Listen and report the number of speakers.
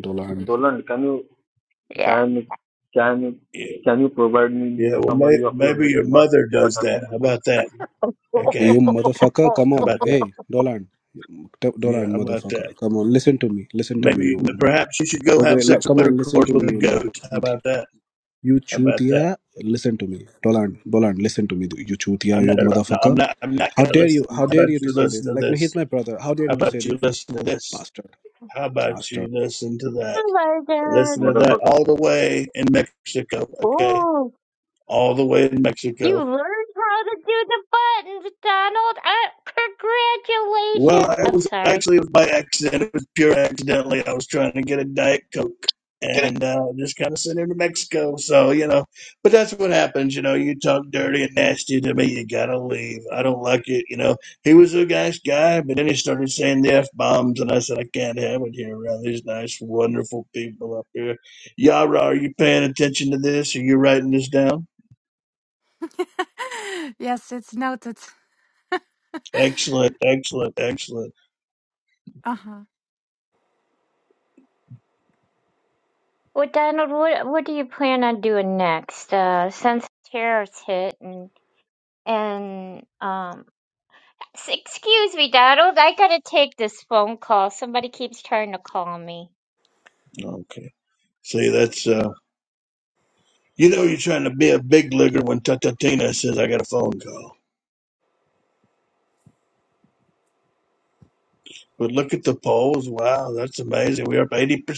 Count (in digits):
5